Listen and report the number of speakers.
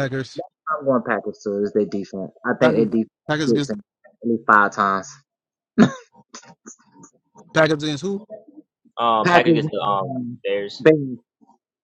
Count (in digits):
3